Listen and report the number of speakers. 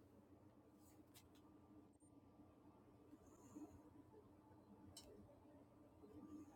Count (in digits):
0